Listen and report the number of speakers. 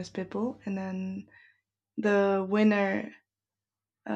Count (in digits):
1